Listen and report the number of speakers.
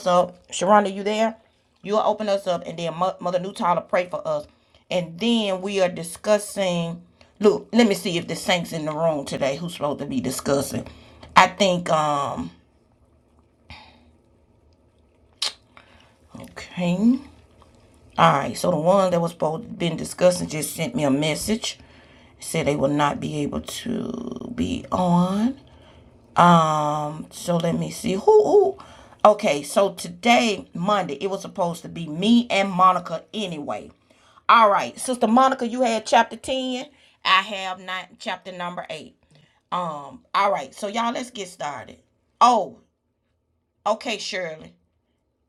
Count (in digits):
1